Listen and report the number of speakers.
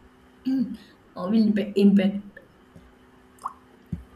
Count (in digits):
1